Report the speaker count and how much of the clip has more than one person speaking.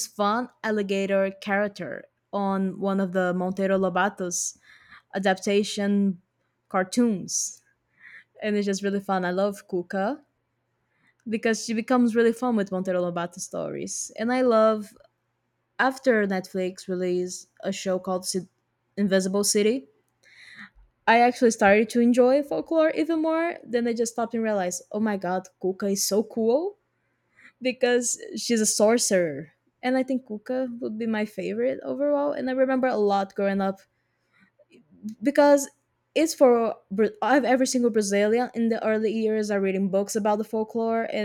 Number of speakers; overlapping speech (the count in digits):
1, no overlap